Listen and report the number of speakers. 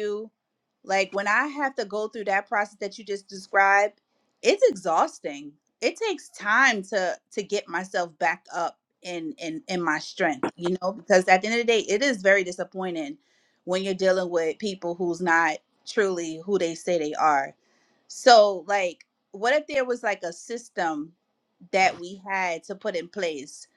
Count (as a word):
one